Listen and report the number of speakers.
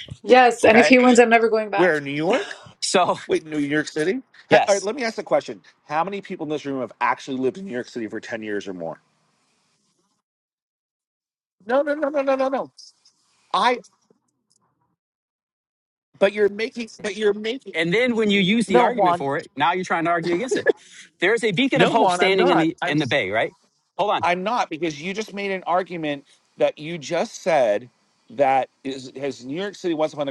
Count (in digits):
3